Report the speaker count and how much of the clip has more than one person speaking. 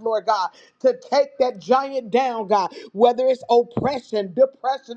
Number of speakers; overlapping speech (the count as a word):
one, no overlap